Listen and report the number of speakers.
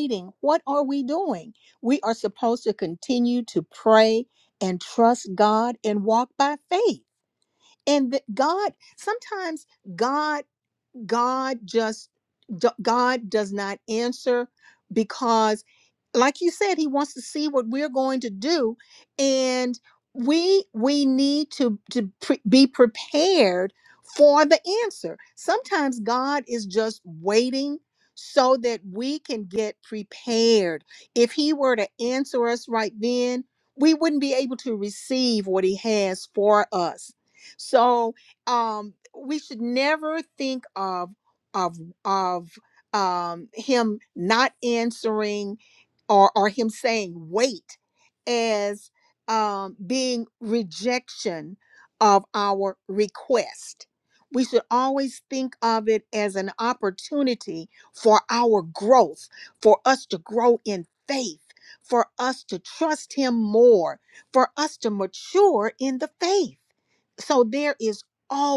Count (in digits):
1